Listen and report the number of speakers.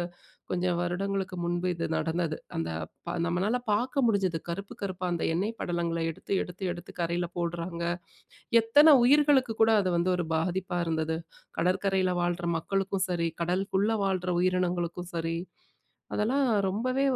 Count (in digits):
1